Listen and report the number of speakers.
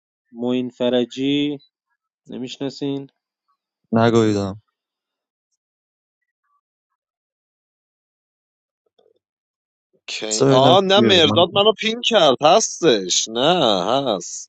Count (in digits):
3